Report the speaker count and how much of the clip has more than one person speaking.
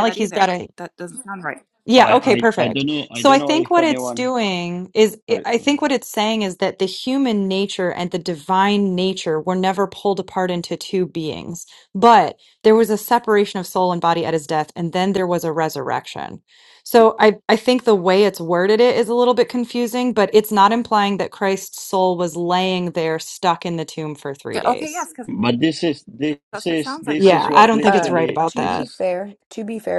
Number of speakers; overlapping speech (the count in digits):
4, about 18%